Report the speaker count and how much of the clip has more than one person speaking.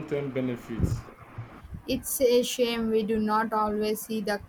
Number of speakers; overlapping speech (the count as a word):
two, no overlap